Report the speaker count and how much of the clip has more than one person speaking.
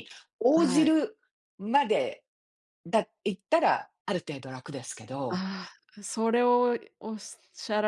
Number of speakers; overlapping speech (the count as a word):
two, about 5%